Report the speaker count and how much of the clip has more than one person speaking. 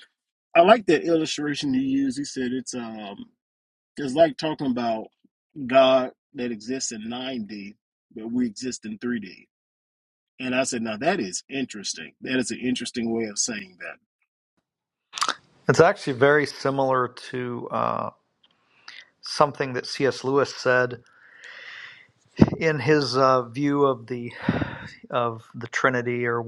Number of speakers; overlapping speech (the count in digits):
2, no overlap